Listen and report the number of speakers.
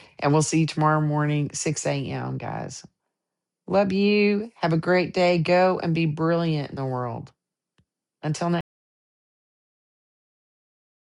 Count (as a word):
one